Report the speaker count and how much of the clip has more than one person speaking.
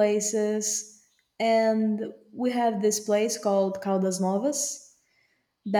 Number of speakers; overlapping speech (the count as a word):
one, no overlap